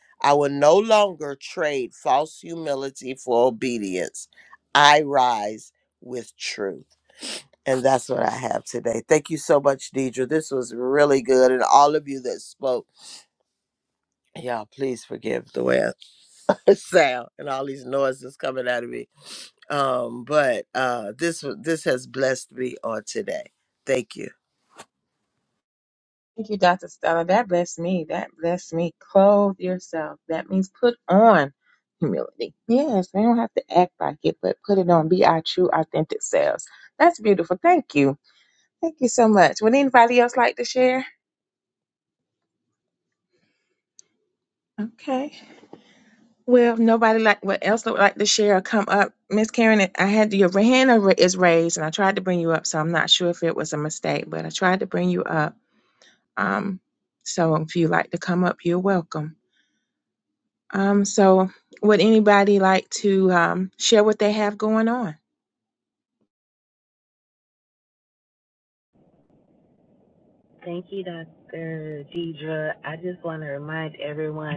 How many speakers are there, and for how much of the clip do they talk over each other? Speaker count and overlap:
3, no overlap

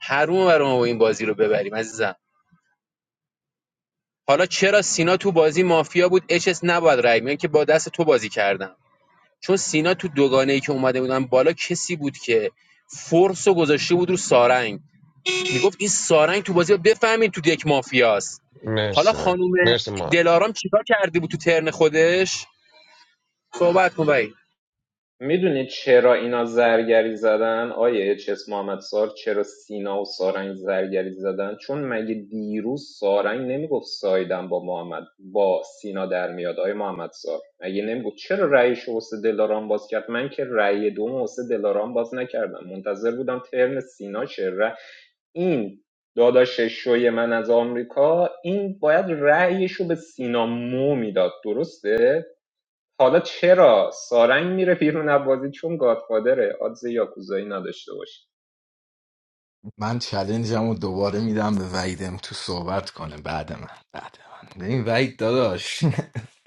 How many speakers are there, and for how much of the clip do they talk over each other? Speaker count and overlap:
4, about 1%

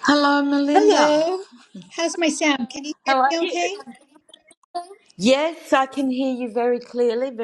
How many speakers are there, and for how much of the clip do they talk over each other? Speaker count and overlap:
2, about 13%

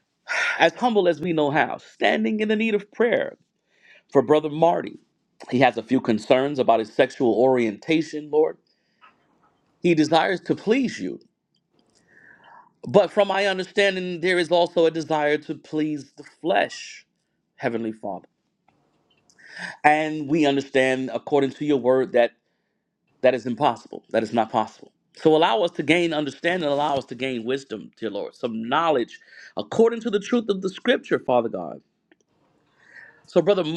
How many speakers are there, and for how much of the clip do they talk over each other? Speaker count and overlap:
1, no overlap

